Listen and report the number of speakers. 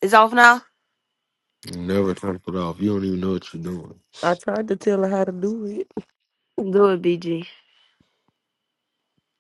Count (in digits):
3